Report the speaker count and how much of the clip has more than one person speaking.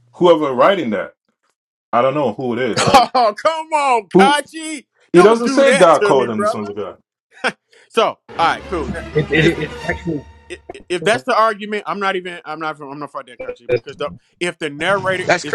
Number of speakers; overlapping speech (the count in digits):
3, about 15%